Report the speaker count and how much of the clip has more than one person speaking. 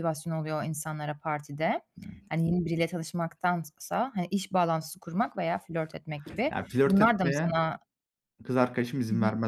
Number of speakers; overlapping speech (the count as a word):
two, about 14%